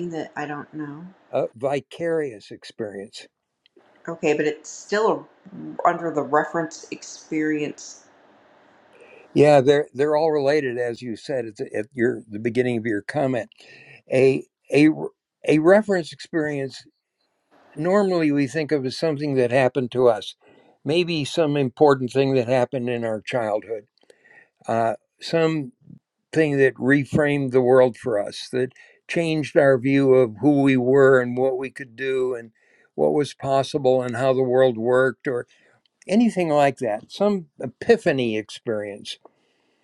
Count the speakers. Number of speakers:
2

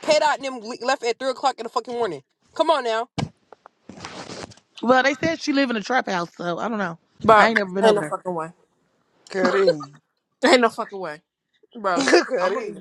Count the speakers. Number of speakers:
4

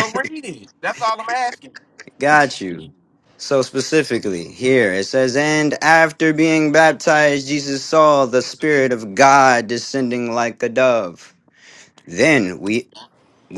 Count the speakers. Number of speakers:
2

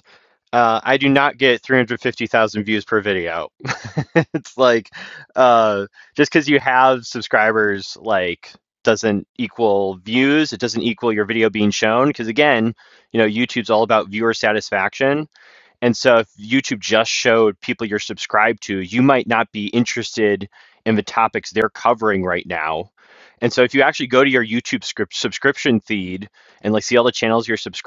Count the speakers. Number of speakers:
1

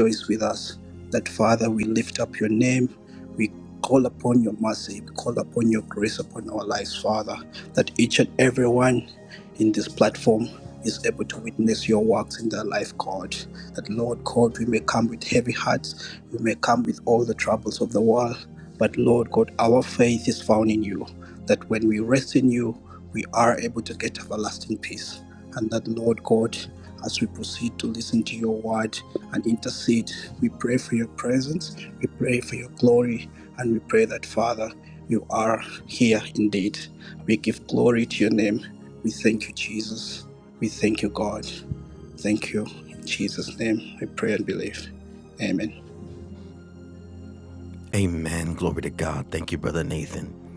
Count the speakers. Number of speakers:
2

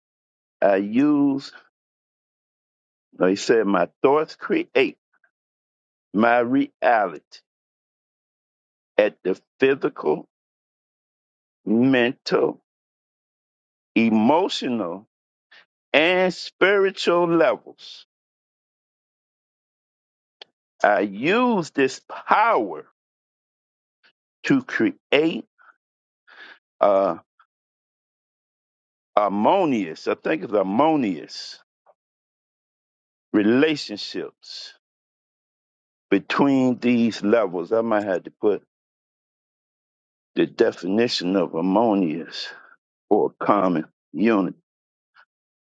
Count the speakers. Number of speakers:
1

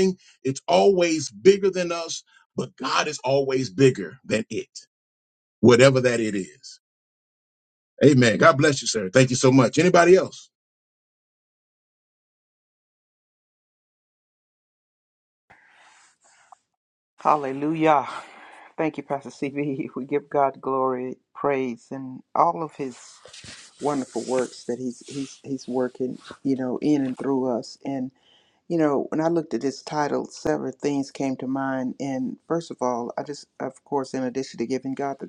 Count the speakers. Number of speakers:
2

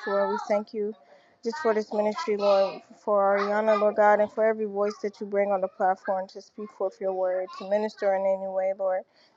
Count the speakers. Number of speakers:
1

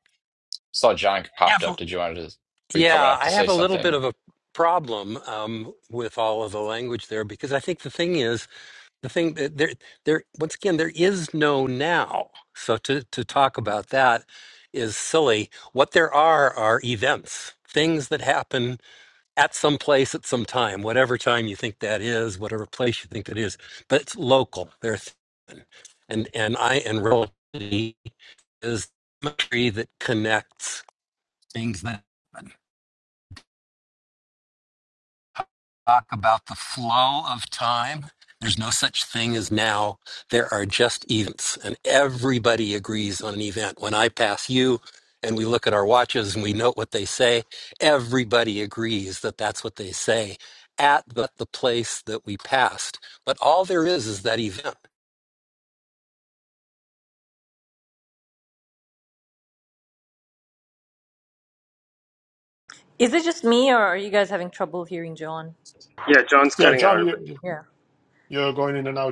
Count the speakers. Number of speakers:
5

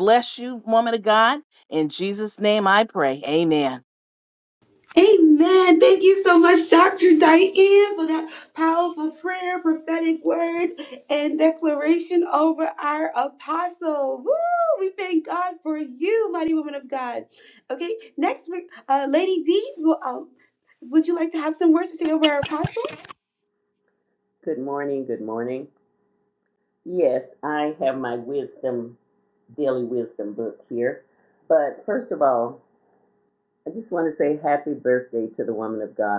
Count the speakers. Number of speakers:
3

